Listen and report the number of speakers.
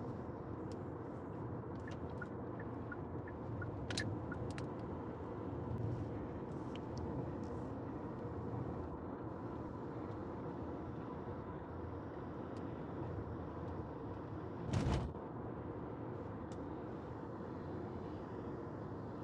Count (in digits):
0